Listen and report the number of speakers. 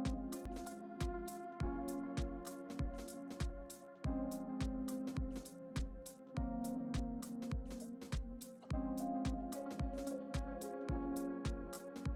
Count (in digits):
0